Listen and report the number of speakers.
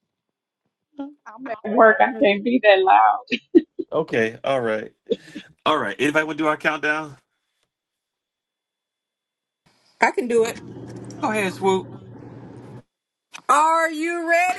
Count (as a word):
three